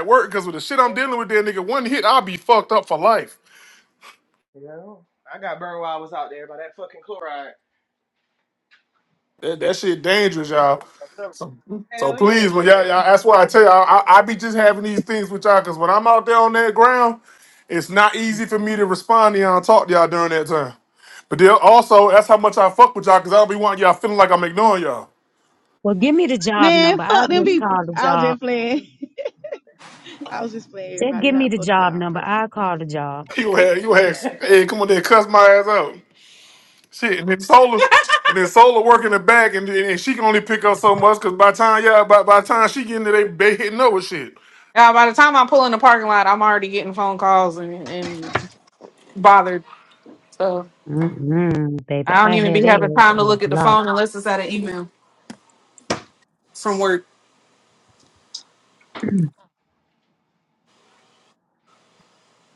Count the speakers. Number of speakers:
5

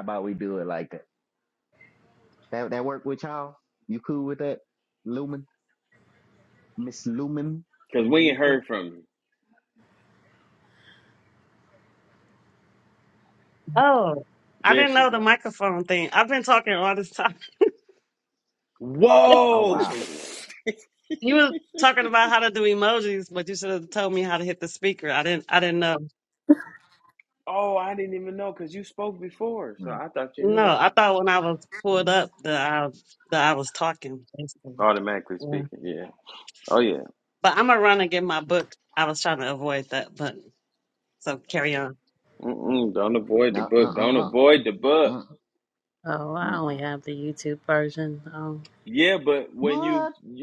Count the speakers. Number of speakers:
4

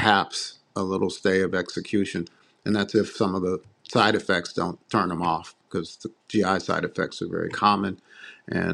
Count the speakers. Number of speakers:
1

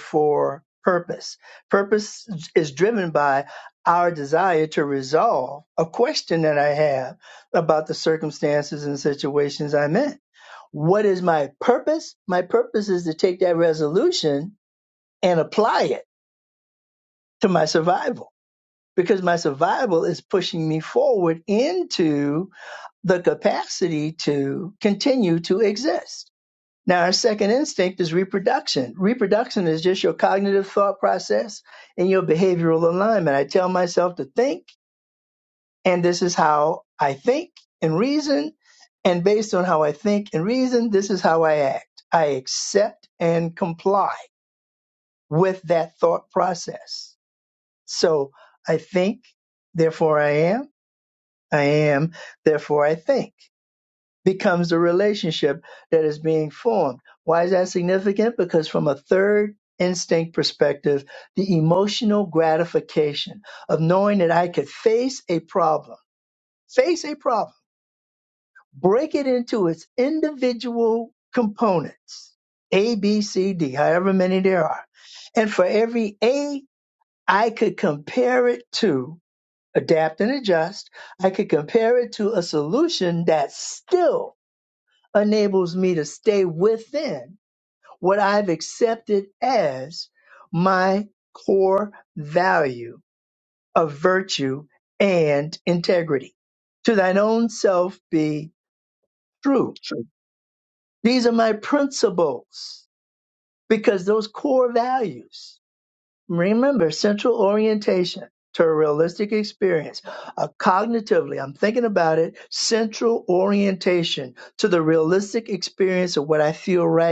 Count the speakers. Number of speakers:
1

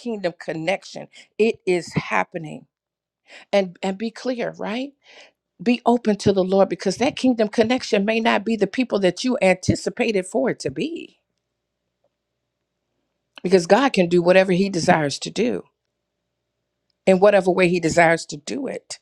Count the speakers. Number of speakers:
1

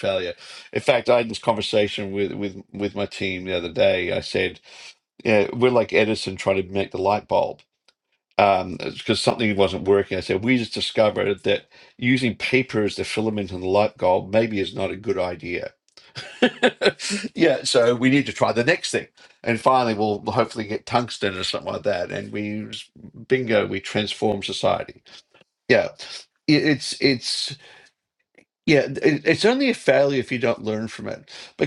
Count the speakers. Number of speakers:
1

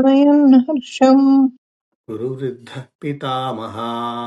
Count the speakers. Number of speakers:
2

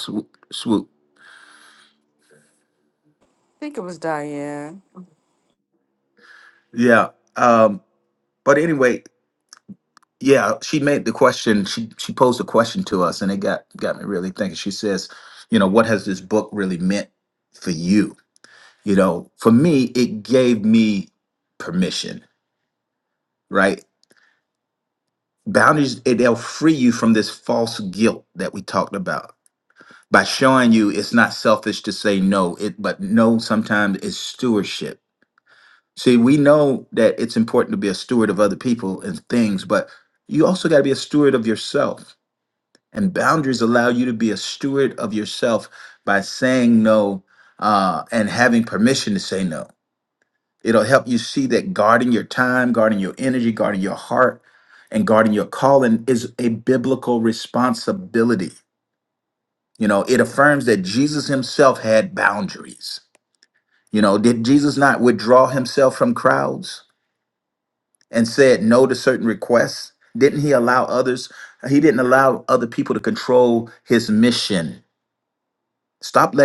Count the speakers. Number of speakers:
2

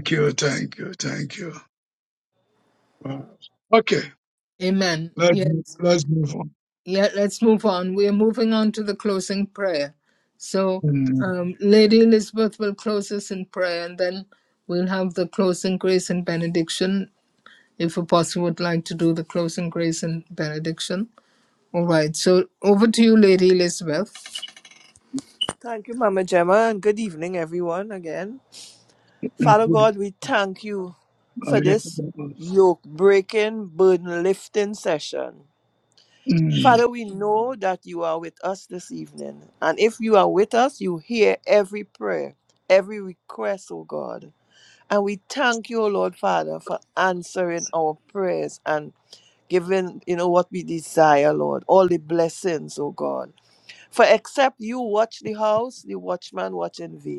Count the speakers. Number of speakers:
3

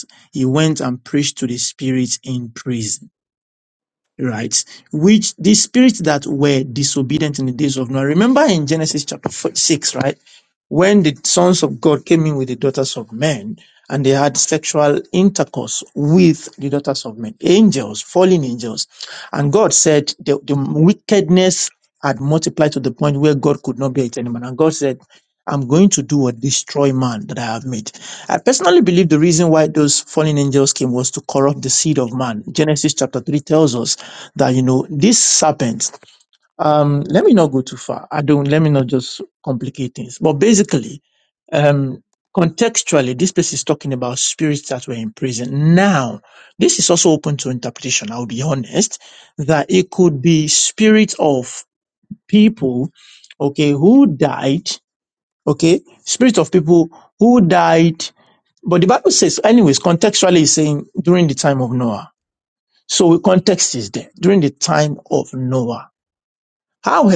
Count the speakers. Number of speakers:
1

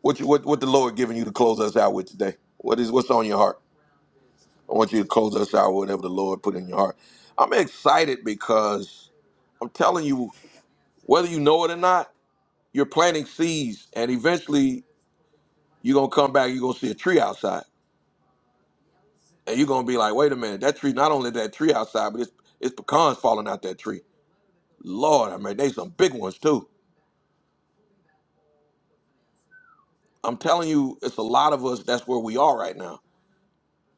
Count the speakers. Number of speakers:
1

